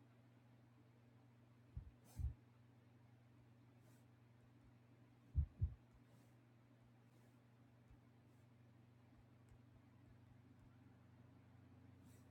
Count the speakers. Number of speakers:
0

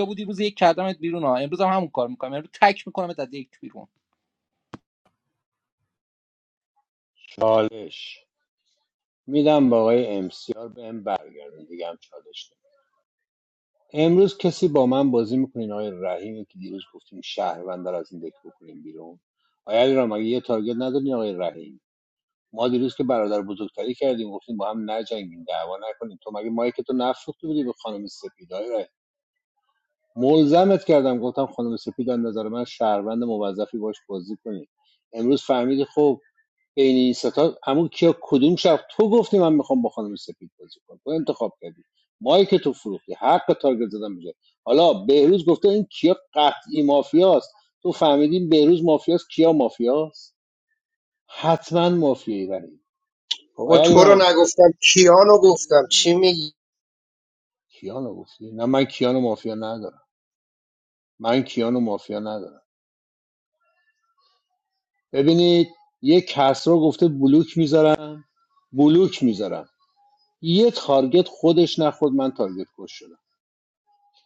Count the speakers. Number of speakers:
3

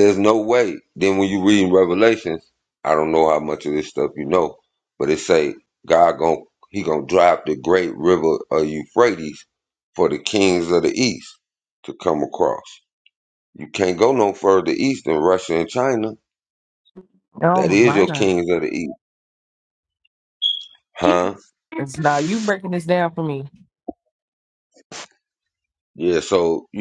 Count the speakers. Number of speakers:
2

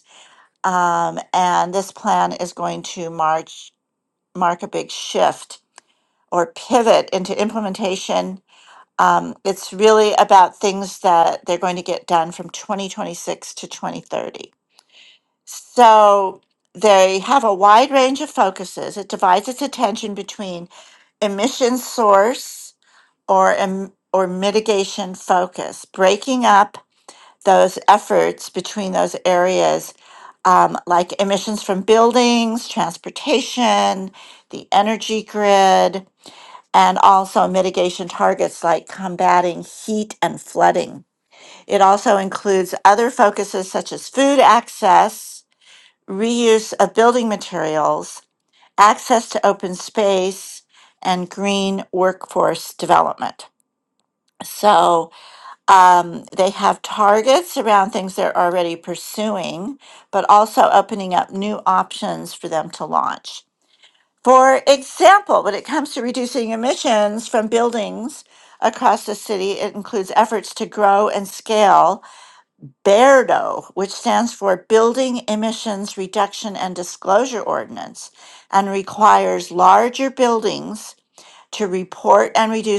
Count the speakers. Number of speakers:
1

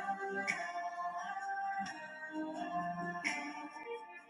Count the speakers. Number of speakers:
0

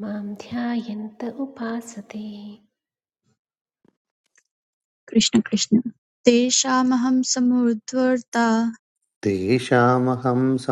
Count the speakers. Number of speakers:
3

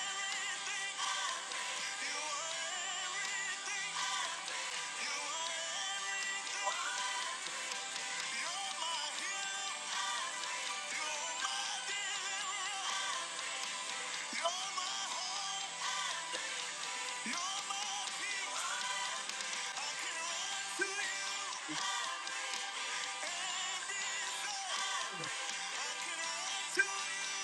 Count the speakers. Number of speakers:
0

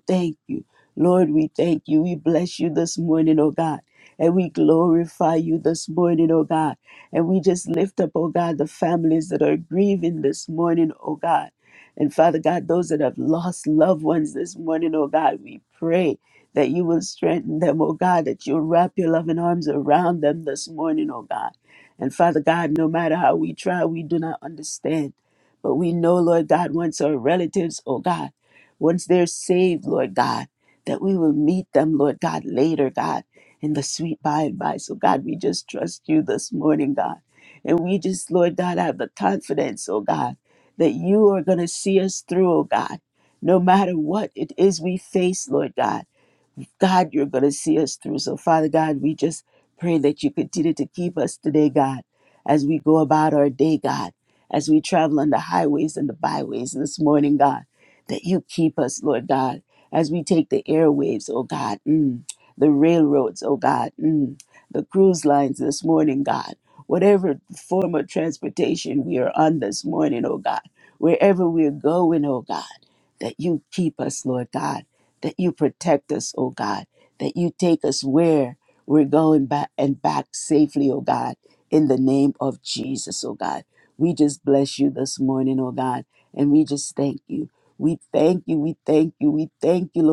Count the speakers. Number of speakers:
1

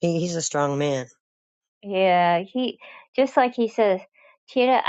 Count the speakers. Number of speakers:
2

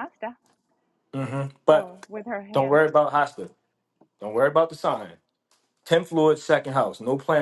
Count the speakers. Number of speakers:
2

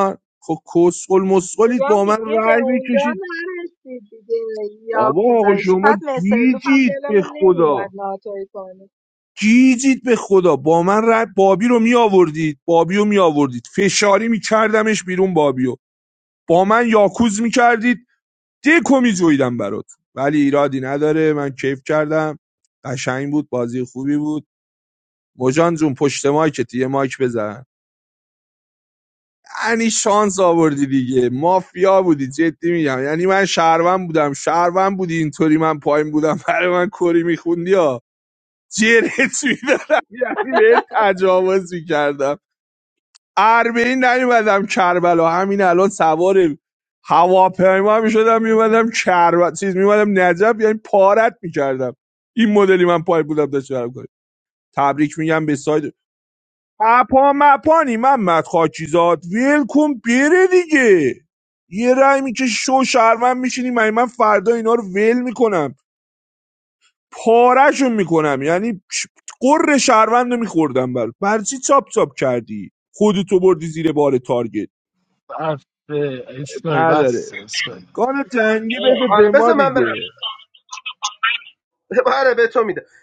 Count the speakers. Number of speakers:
4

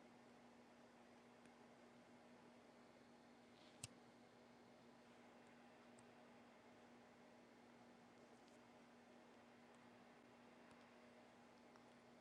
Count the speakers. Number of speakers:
0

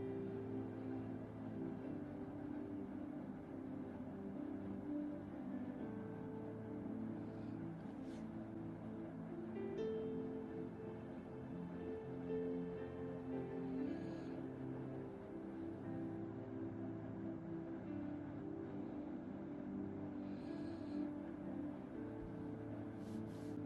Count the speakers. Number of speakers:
0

